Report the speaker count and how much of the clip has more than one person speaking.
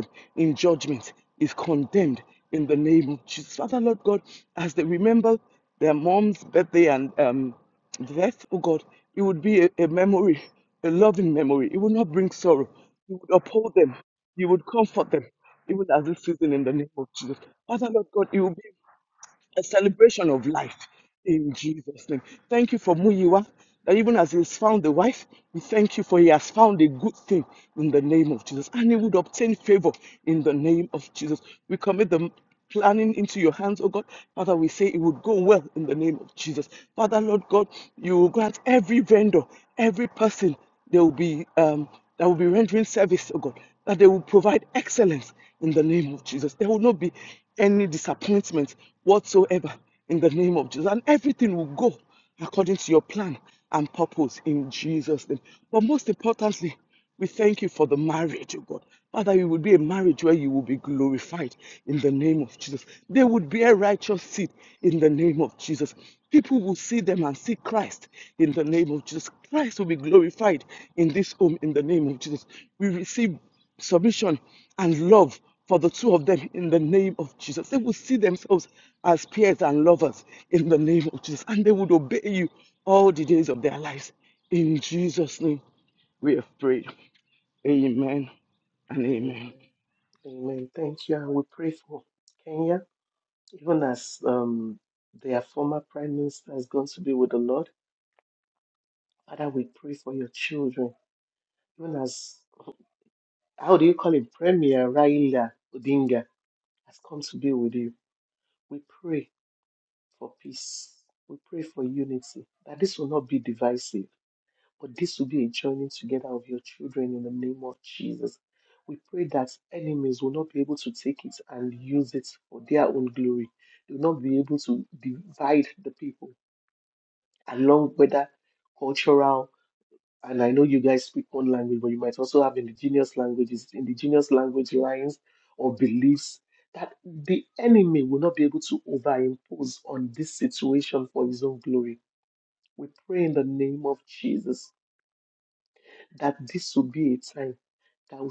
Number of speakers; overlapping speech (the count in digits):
2, under 1%